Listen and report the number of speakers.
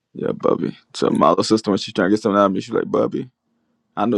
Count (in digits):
1